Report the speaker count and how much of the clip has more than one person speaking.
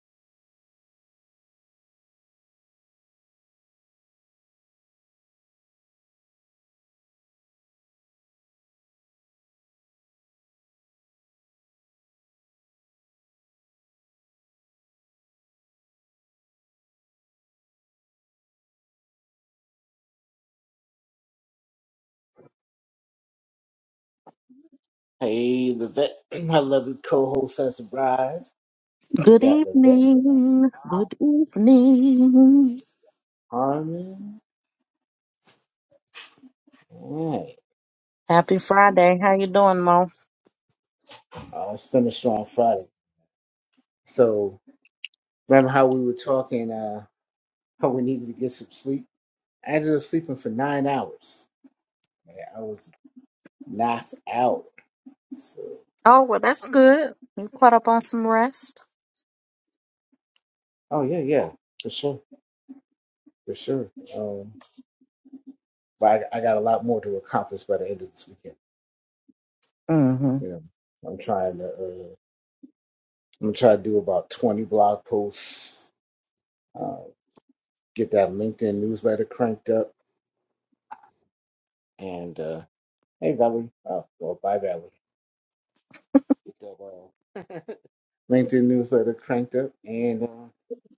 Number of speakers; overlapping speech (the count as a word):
two, about 1%